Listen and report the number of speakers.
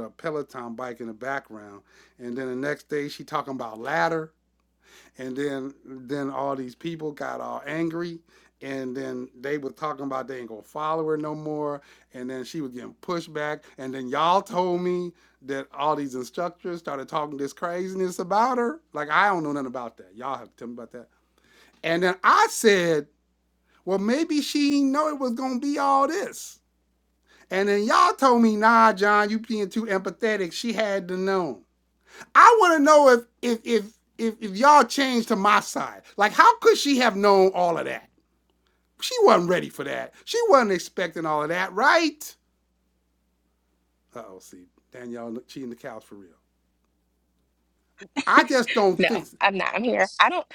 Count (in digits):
2